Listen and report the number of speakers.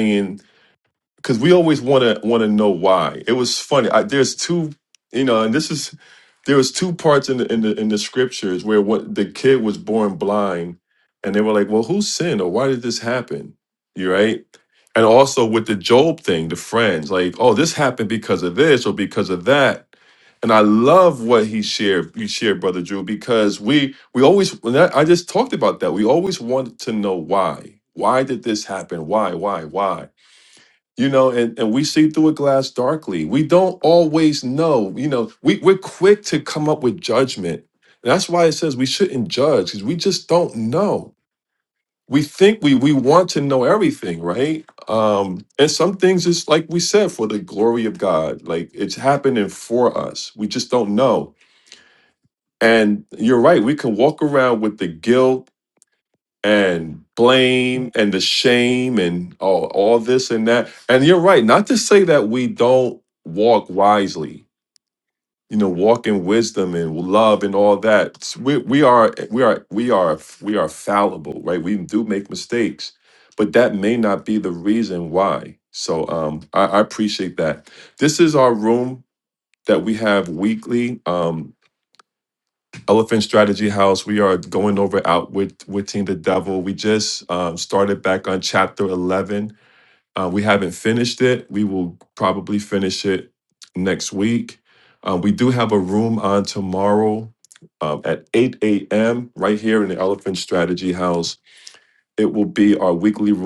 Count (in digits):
1